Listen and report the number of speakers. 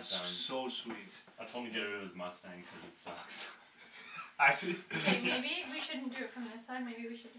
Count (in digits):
3